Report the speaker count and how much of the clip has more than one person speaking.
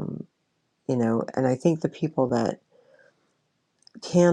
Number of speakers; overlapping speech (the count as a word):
one, no overlap